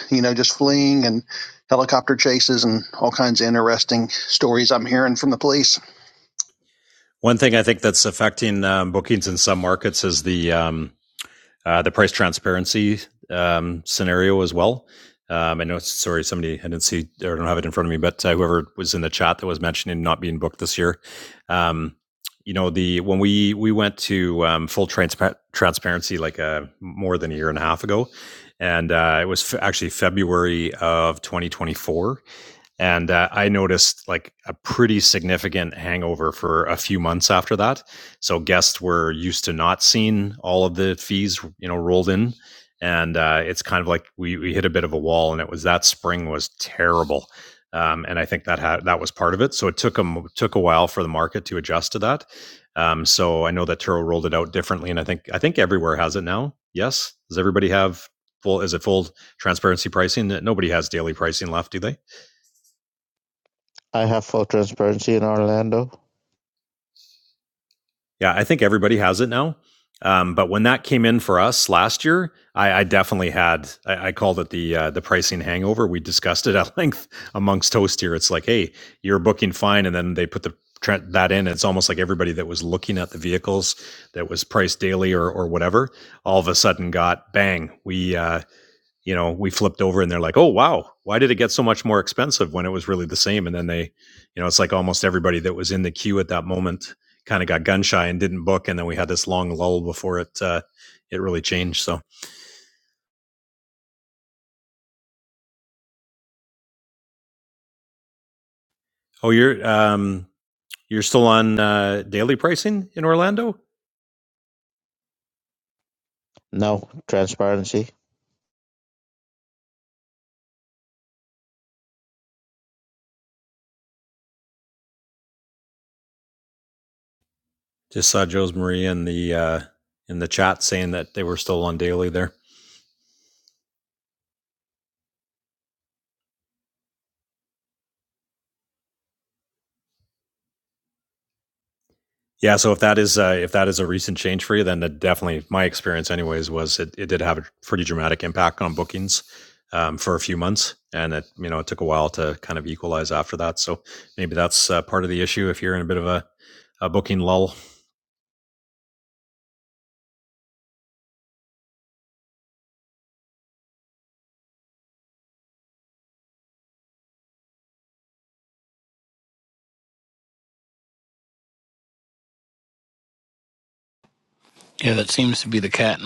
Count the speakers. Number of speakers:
four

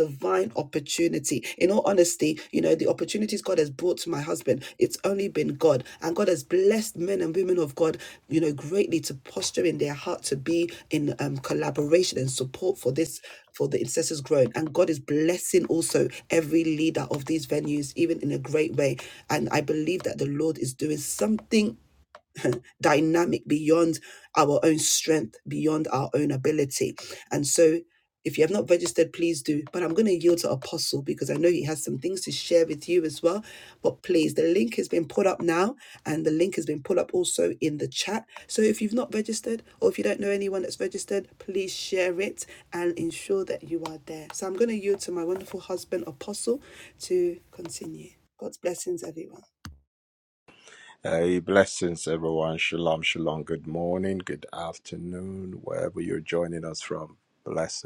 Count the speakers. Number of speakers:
two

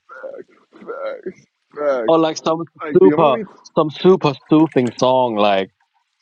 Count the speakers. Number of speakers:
two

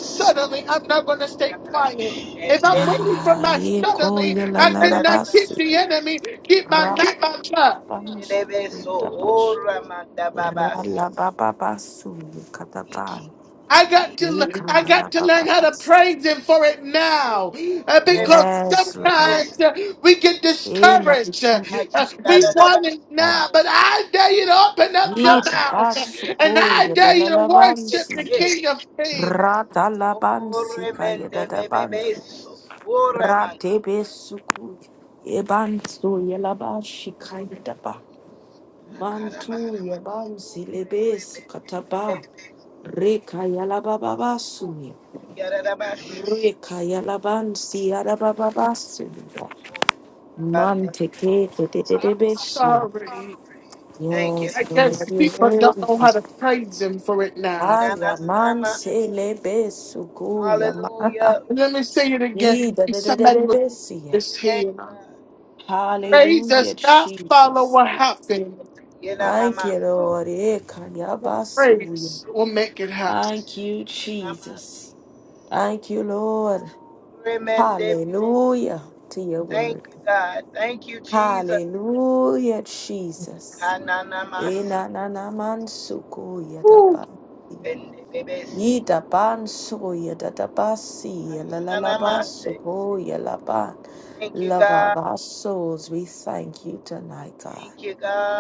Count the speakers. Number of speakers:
three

